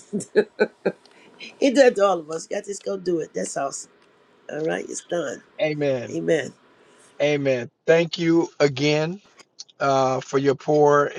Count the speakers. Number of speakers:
2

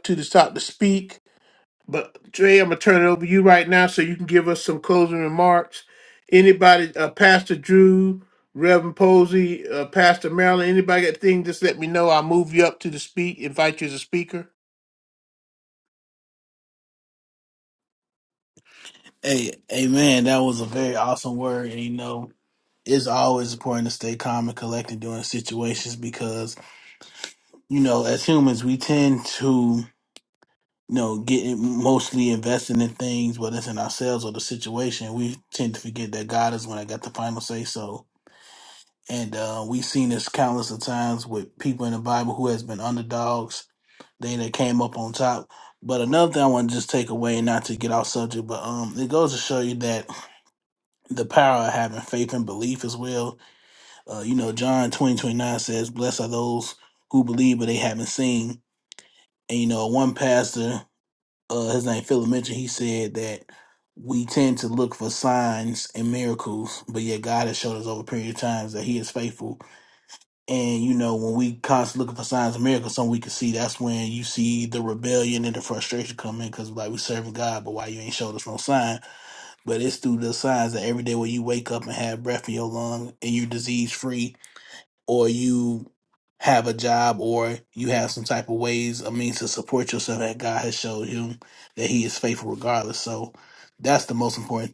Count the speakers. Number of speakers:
2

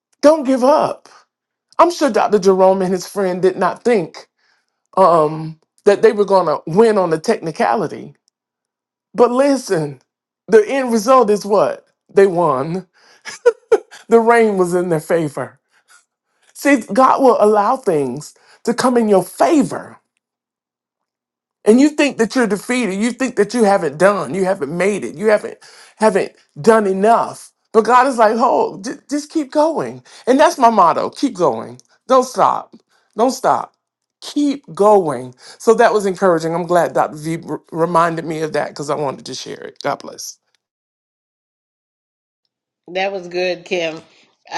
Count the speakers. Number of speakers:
2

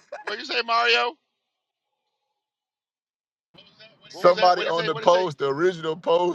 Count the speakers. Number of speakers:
2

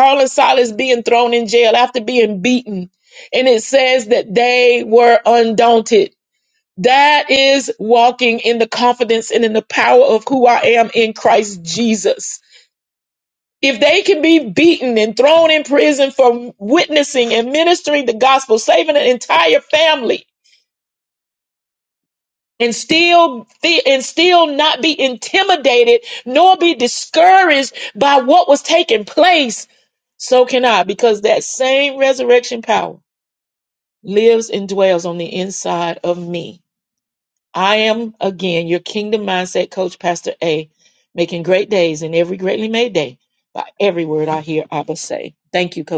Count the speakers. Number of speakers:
1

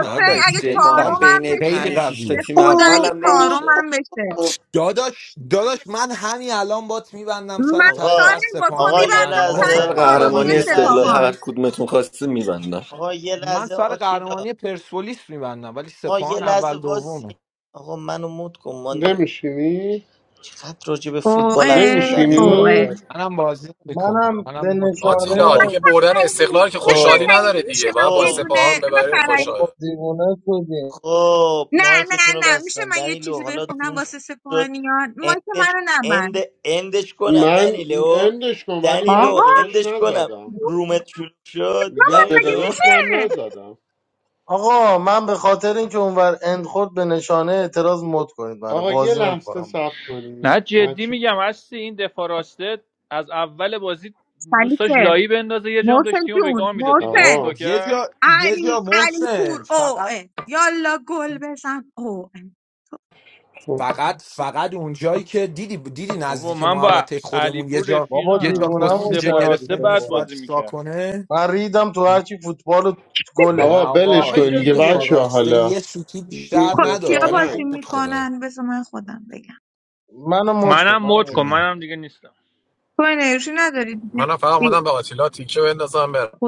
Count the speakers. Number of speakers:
8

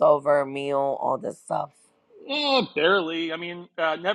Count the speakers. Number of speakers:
2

